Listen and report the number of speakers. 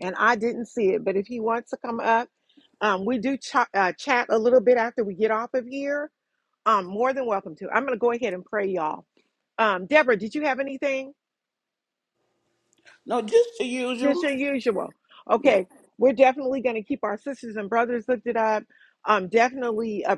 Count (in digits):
2